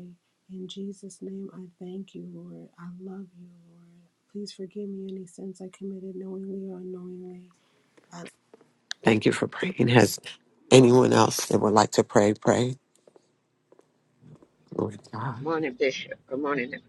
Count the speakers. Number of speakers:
three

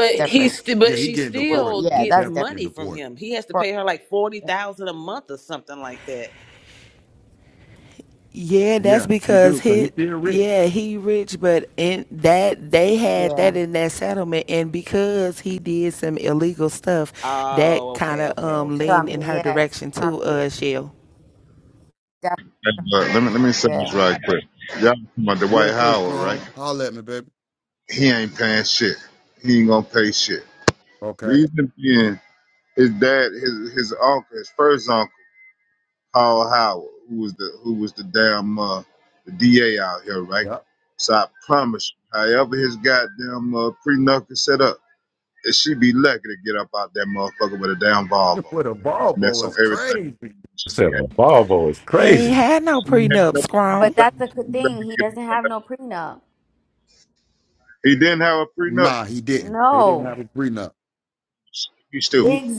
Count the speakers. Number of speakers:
six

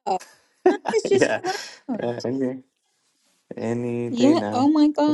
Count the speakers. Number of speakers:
two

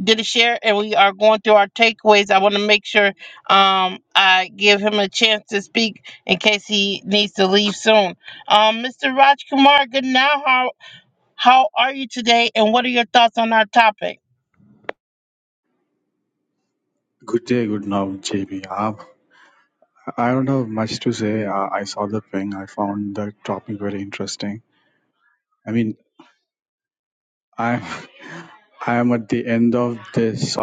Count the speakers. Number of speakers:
two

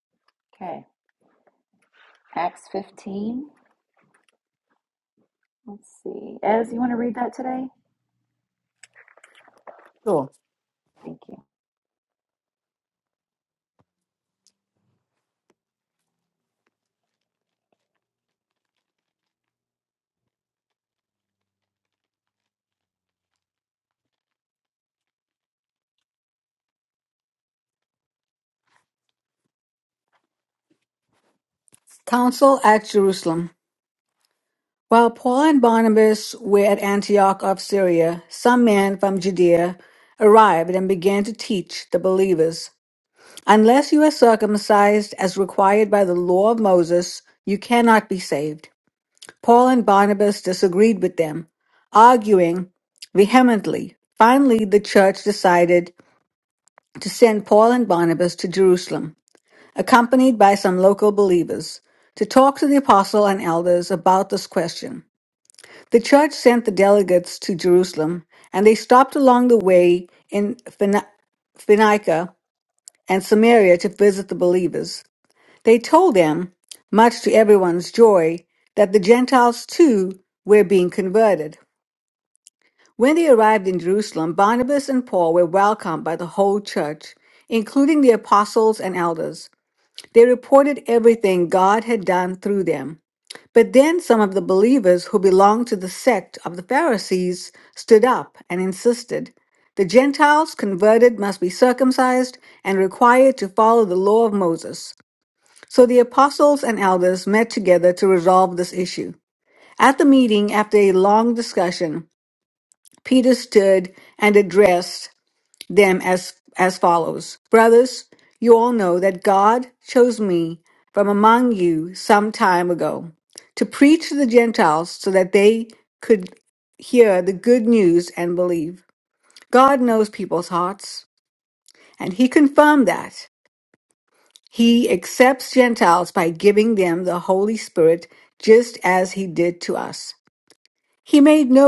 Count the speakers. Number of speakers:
two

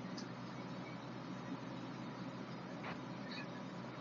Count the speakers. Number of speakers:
zero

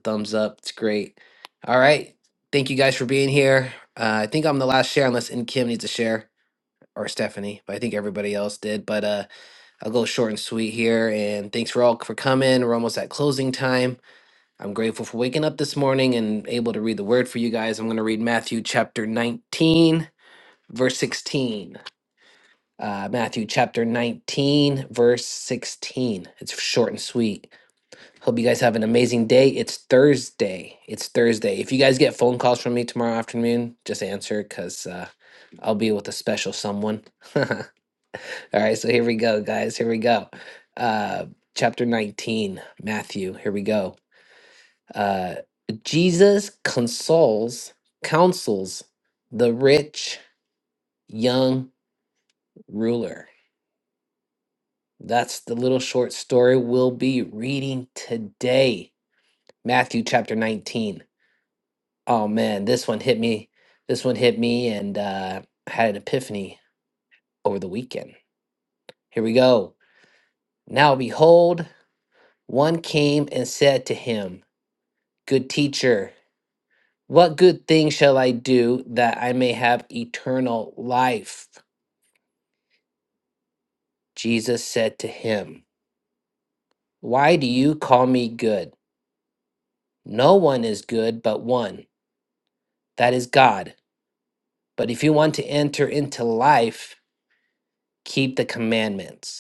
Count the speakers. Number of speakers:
one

